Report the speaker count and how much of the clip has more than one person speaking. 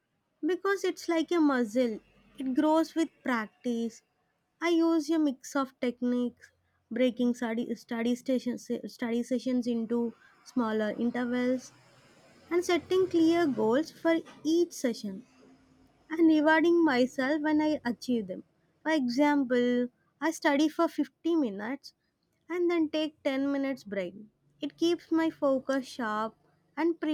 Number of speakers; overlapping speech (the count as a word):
one, no overlap